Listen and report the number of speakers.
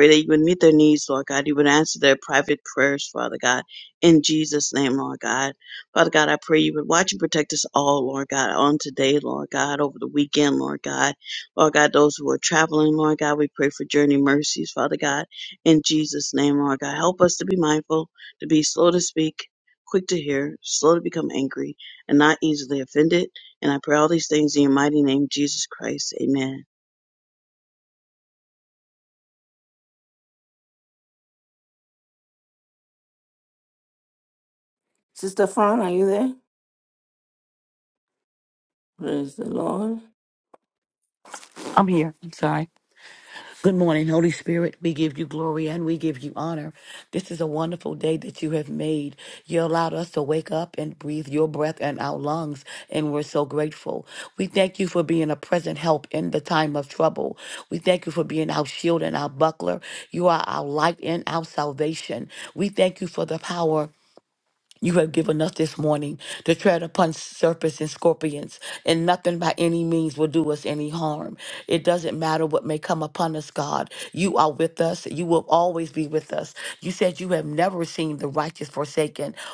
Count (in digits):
3